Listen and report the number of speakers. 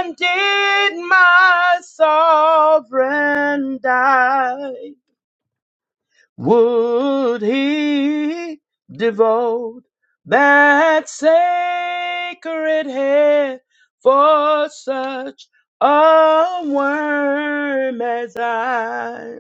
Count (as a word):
one